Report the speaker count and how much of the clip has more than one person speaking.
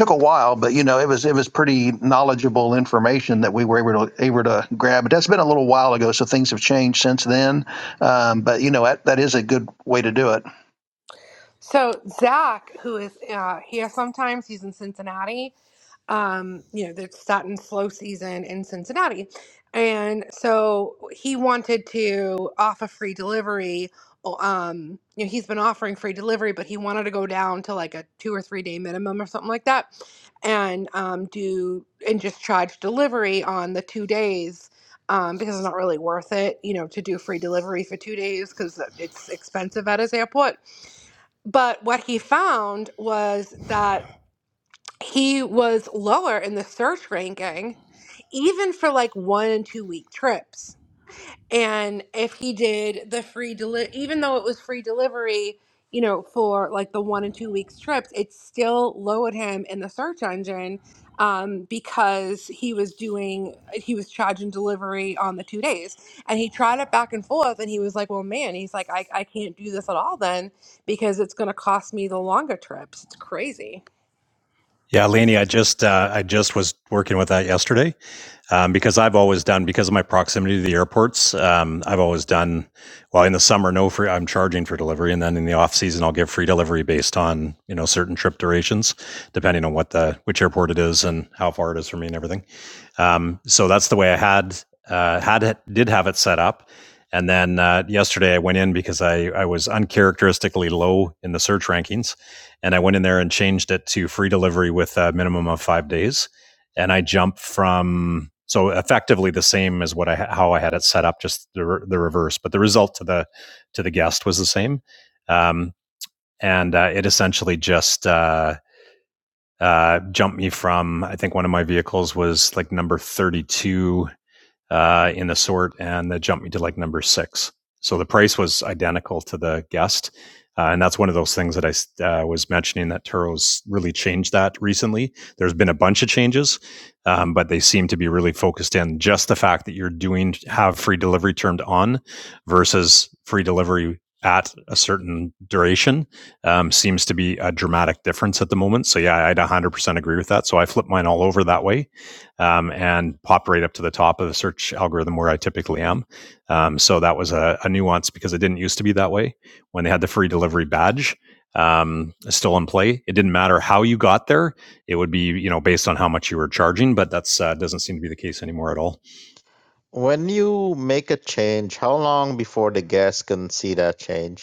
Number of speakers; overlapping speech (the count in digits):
4, no overlap